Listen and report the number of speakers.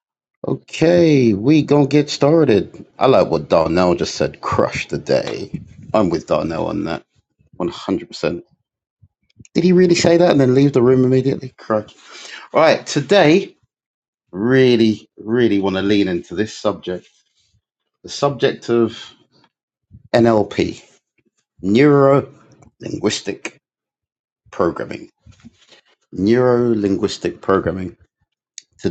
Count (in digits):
1